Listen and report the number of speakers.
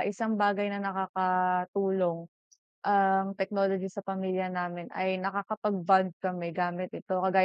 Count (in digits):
1